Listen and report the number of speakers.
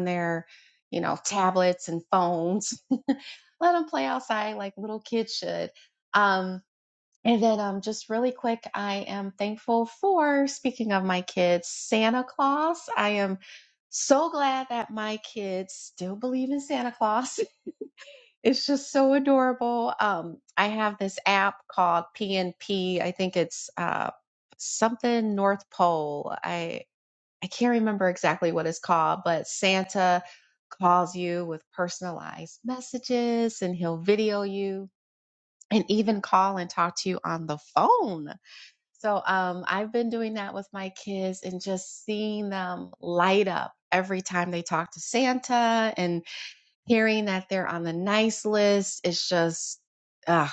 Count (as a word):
one